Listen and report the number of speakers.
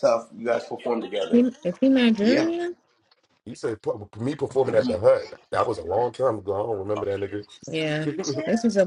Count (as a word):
three